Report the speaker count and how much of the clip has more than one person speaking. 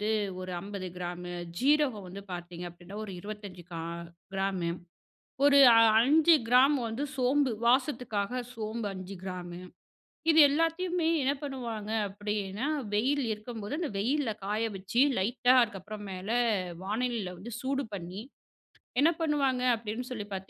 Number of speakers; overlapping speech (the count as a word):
one, no overlap